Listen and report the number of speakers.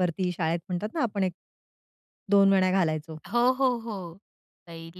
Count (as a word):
two